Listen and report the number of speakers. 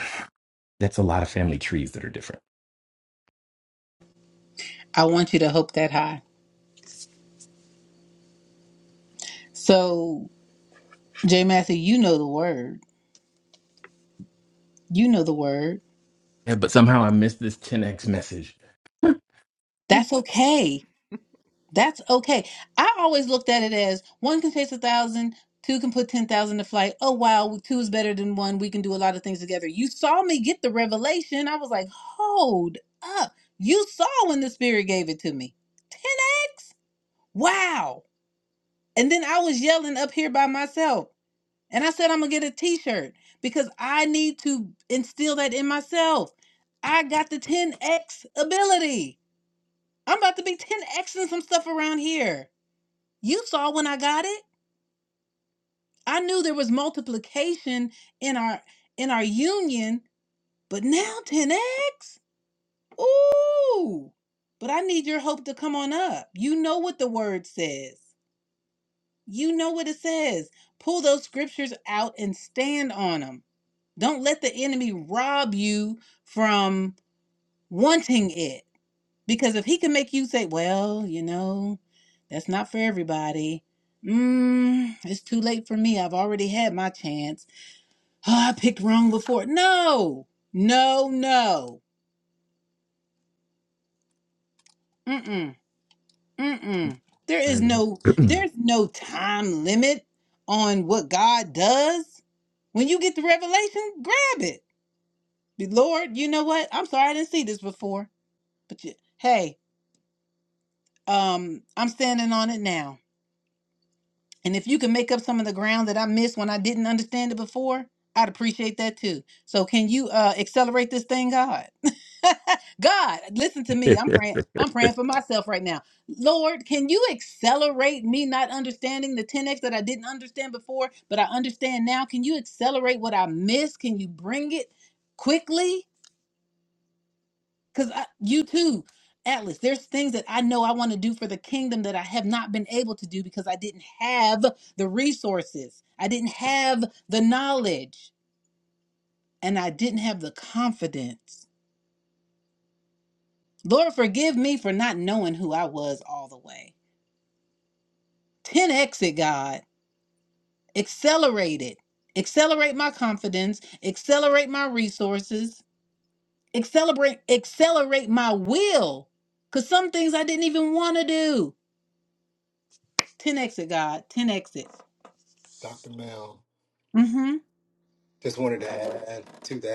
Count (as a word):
three